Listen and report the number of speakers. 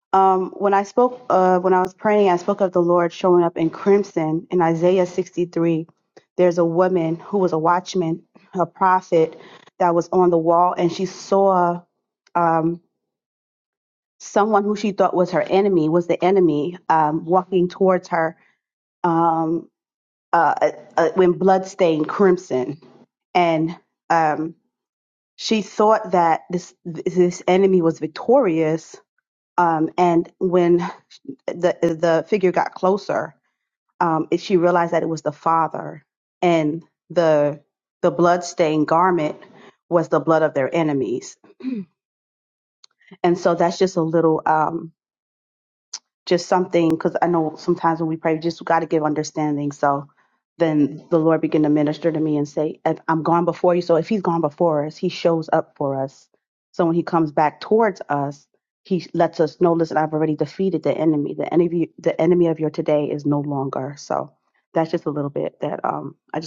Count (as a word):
one